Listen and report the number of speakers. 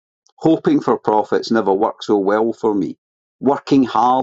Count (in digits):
1